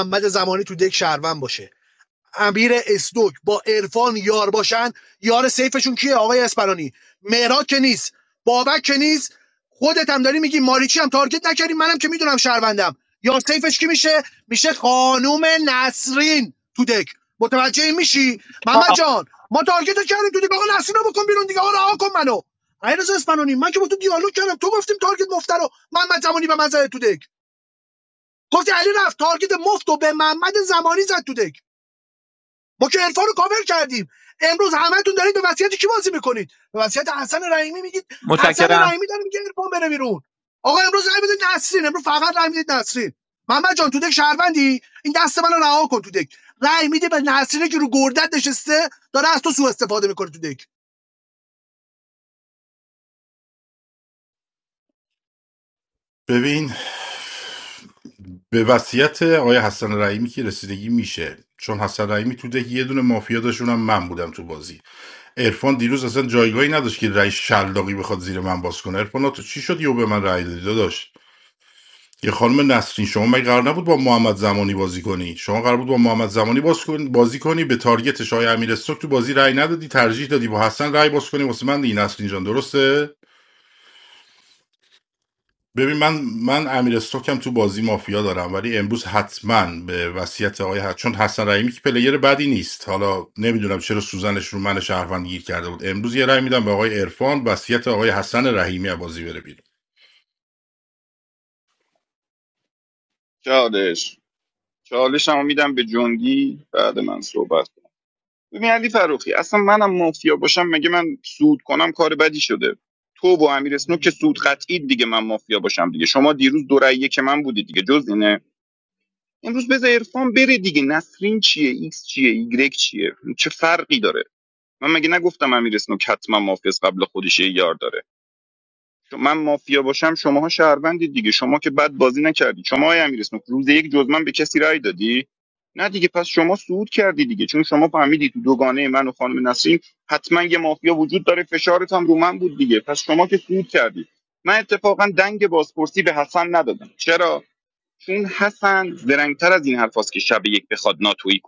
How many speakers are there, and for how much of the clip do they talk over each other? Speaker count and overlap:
3, no overlap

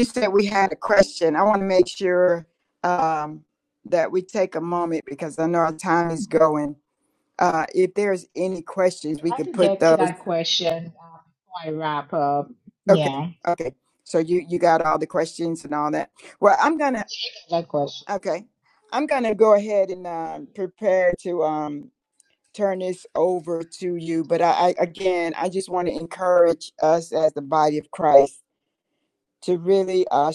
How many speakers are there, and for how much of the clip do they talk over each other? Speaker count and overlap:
2, about 4%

